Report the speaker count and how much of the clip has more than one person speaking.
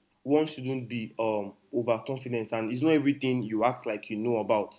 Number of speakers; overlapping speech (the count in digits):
1, no overlap